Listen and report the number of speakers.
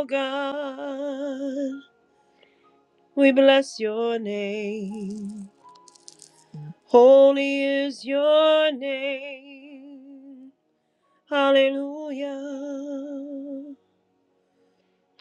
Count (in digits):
1